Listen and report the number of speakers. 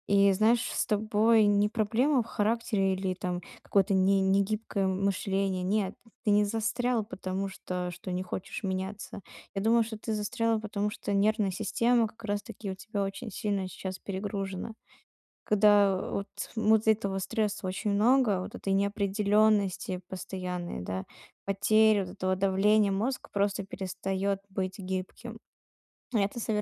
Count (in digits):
1